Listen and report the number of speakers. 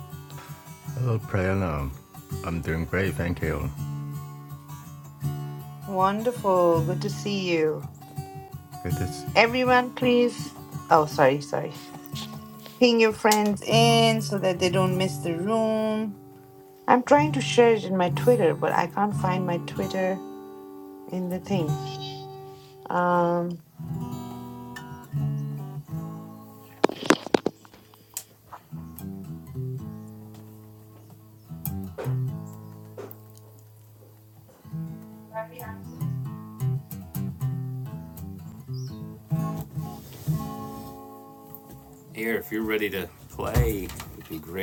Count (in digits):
3